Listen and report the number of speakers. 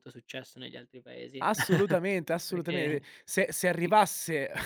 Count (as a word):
two